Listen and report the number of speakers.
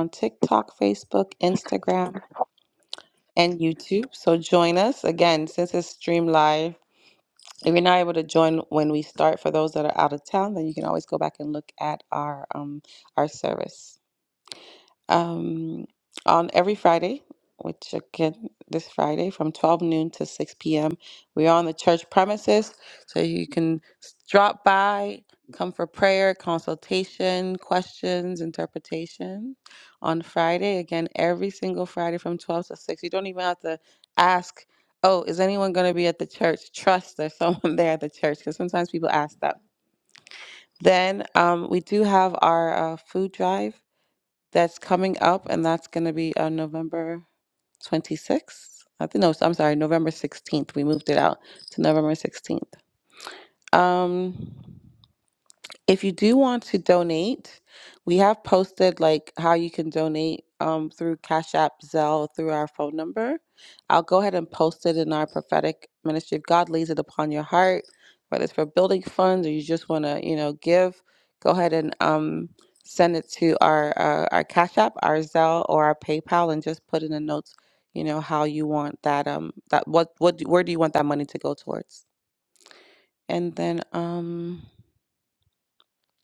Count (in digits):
1